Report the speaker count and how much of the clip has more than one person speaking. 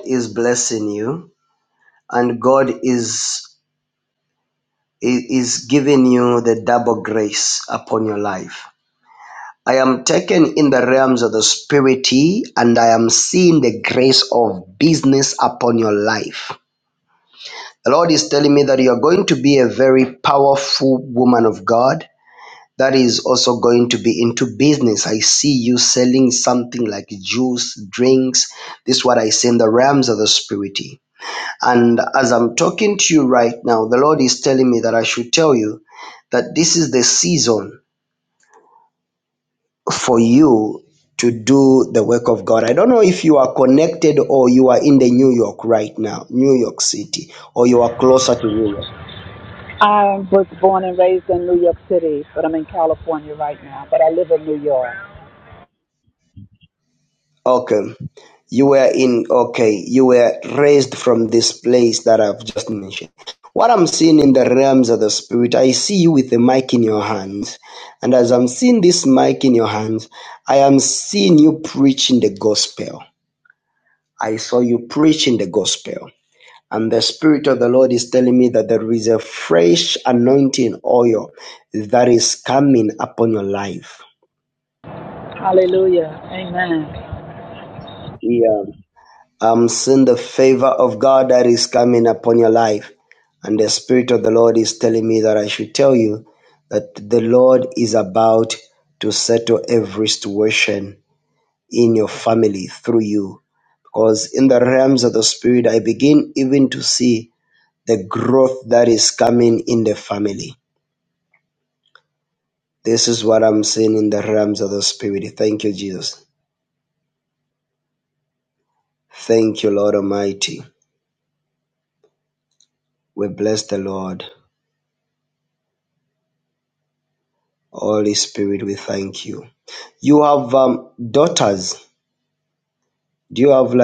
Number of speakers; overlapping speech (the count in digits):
2, no overlap